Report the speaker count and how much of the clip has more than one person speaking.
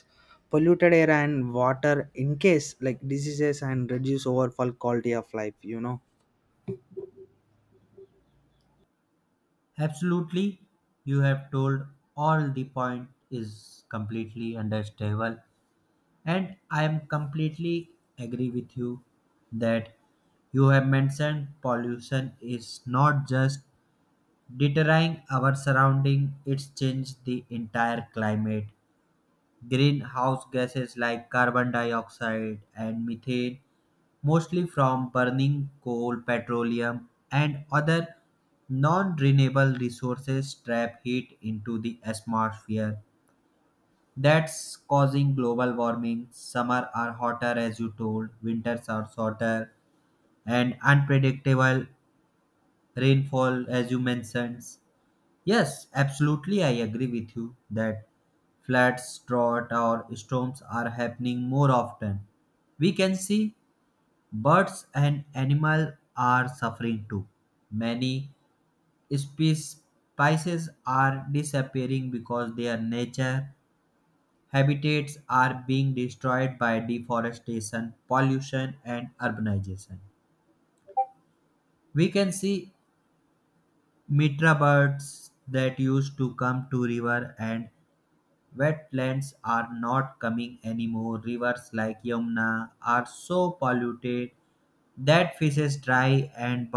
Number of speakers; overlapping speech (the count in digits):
2, no overlap